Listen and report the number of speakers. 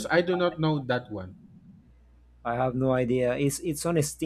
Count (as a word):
two